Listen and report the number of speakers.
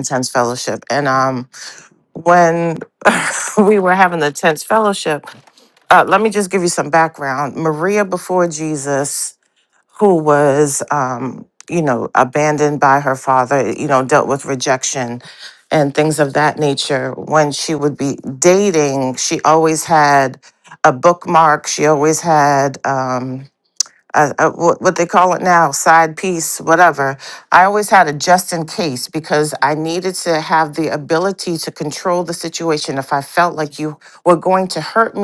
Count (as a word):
one